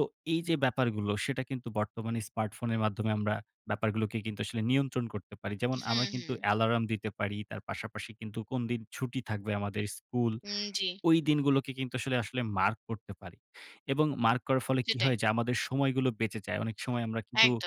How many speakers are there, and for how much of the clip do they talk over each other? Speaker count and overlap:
two, about 6%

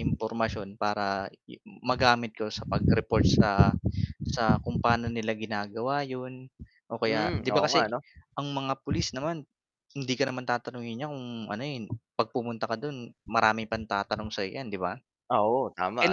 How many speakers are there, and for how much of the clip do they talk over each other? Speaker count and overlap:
two, about 6%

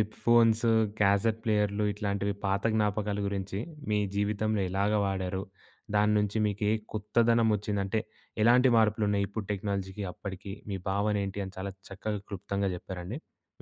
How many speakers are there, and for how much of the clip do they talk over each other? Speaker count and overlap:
one, no overlap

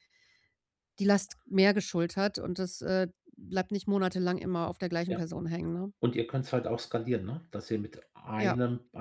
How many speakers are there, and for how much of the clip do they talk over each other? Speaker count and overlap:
two, about 4%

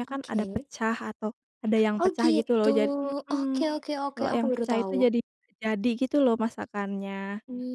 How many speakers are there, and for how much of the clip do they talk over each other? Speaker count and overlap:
two, about 35%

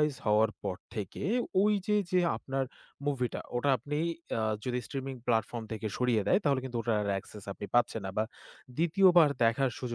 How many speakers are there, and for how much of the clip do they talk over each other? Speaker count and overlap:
one, no overlap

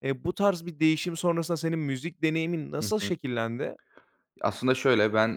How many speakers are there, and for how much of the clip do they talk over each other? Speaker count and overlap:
two, about 6%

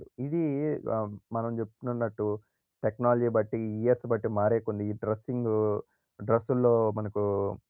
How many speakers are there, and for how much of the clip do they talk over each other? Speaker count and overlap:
one, no overlap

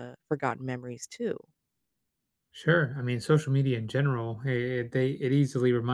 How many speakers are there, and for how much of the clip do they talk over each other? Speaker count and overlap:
two, no overlap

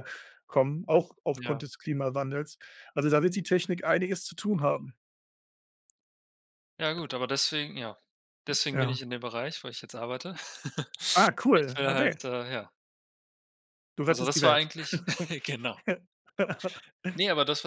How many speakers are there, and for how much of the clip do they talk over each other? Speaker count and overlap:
two, about 9%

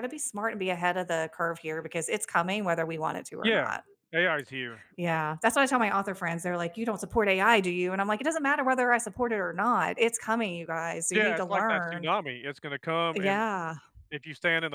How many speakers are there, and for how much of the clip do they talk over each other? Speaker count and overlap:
two, about 10%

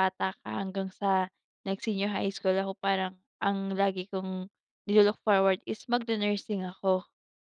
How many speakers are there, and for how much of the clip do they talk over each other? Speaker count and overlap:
one, no overlap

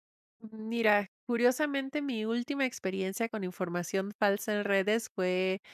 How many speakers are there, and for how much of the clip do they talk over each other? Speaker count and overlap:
one, no overlap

